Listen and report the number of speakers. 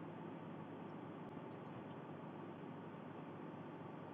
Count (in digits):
0